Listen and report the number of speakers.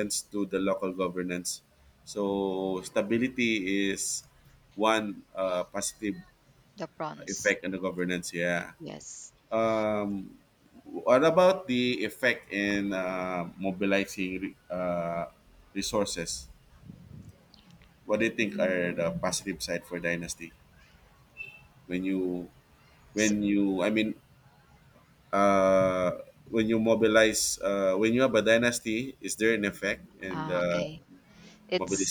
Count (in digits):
2